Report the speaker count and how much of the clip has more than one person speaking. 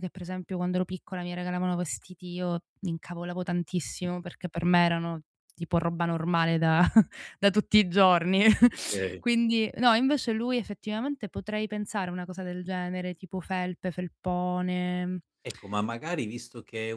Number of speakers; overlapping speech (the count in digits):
2, under 1%